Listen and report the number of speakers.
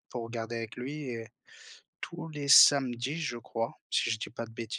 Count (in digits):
1